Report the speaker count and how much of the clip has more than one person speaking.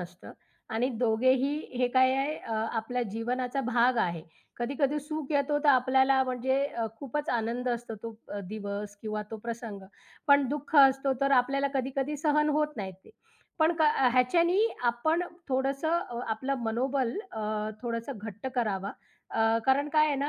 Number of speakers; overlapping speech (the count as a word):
one, no overlap